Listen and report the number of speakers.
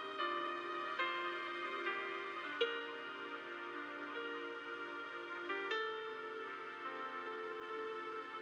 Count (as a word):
zero